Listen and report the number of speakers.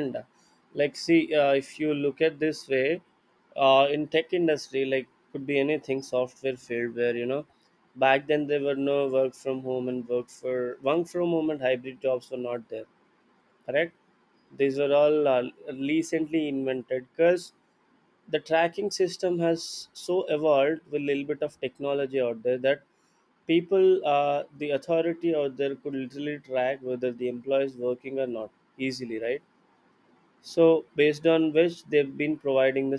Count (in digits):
1